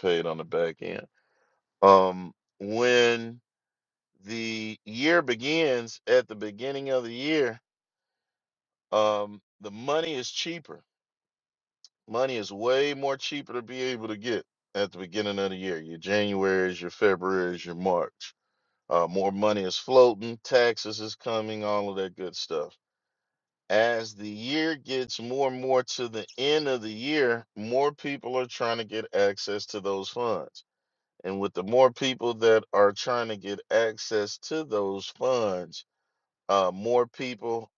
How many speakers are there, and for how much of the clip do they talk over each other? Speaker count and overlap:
1, no overlap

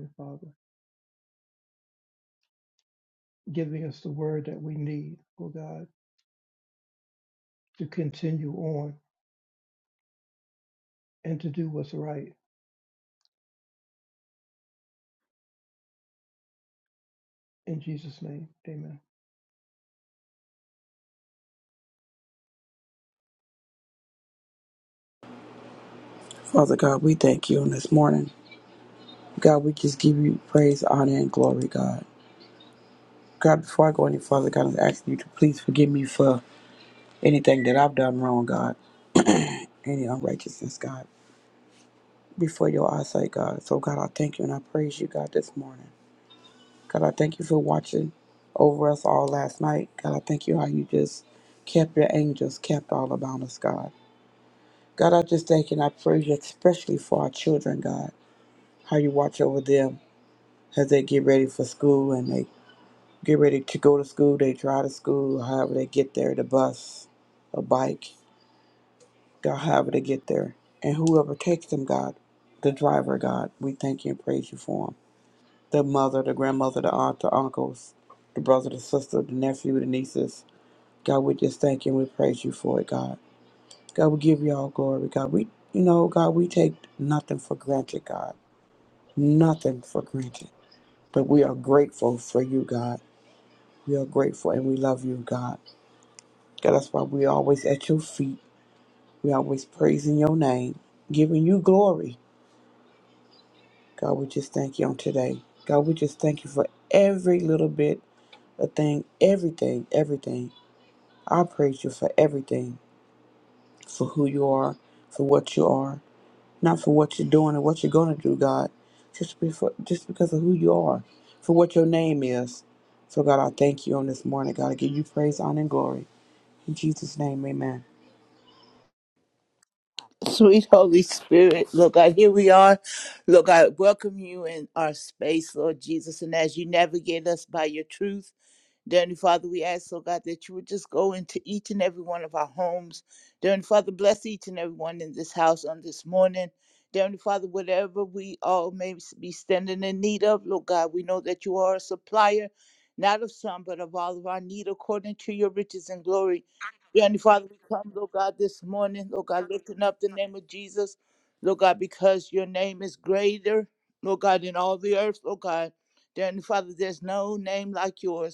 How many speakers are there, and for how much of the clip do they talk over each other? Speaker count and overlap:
3, no overlap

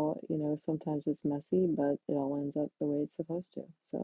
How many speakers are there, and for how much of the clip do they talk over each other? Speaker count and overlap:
1, no overlap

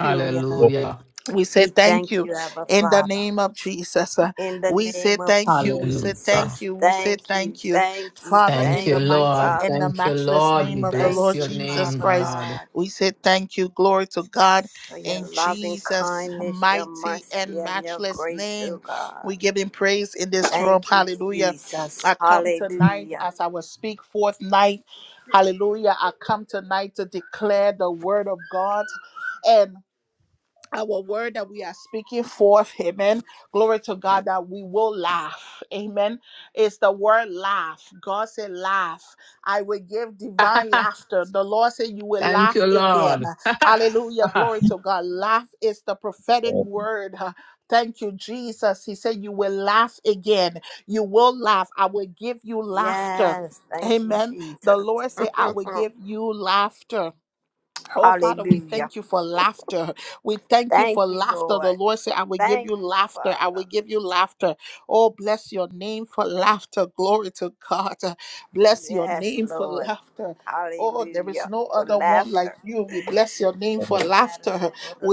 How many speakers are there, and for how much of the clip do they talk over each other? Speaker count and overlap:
3, about 32%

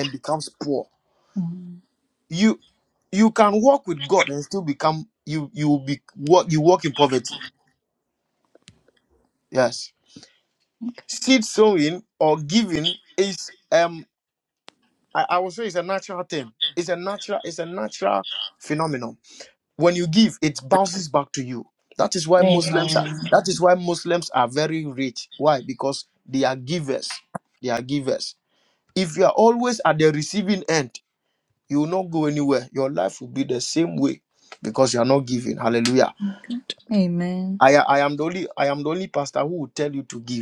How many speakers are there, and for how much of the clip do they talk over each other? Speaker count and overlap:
2, about 2%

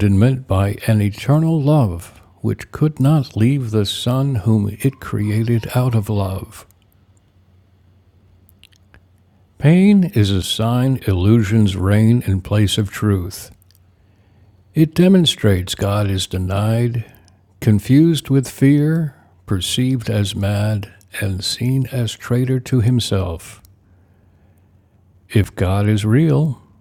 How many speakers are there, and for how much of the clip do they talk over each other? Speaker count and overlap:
1, no overlap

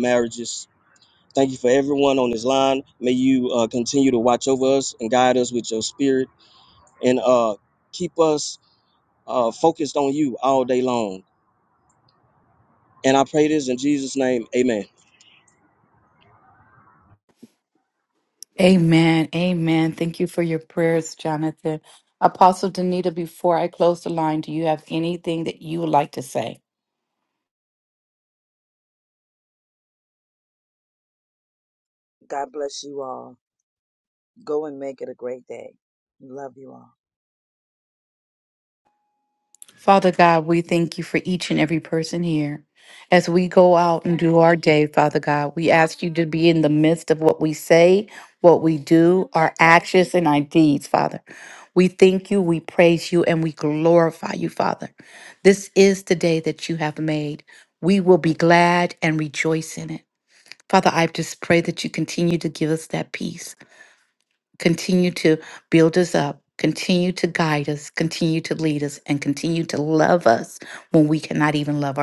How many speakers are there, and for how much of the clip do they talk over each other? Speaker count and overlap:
3, no overlap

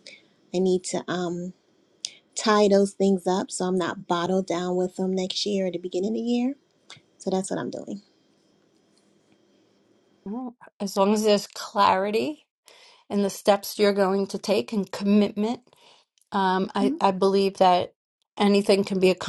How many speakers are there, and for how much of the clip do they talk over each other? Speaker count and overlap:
2, no overlap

